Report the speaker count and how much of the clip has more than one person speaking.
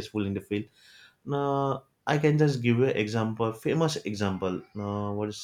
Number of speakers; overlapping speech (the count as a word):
one, no overlap